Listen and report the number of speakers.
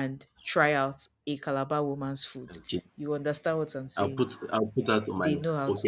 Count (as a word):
two